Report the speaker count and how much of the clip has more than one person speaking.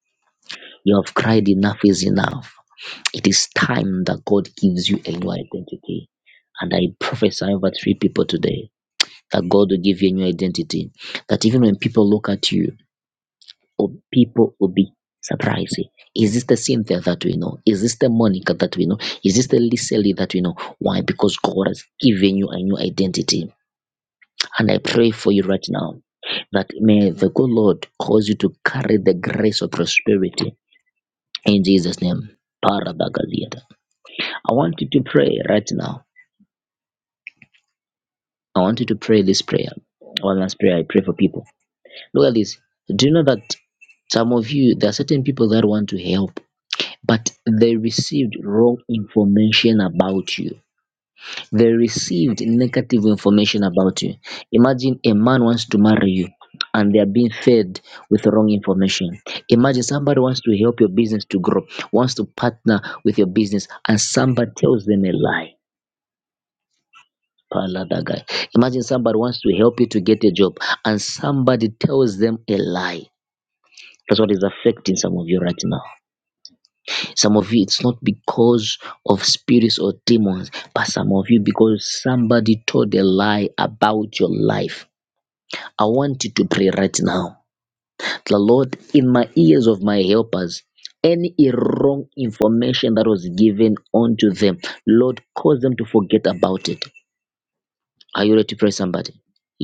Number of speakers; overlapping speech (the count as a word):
one, no overlap